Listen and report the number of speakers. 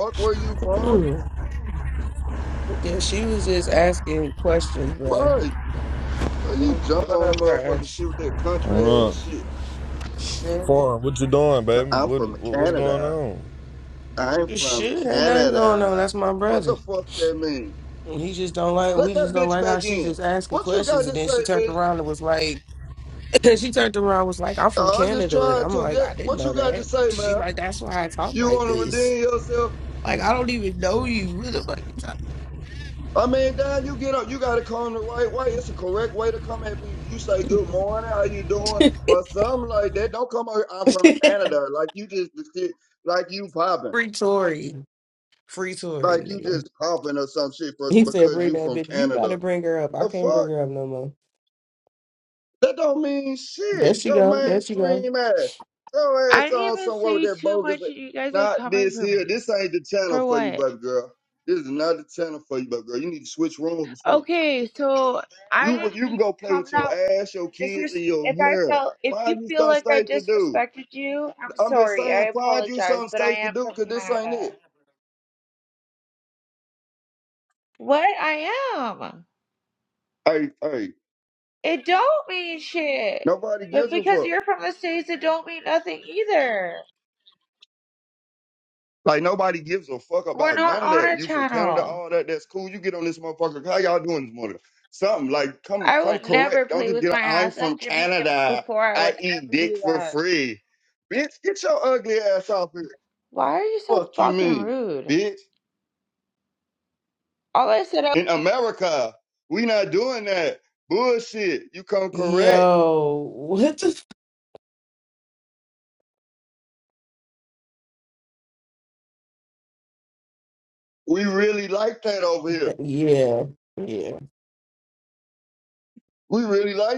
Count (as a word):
four